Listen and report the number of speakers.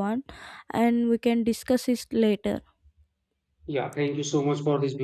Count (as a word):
two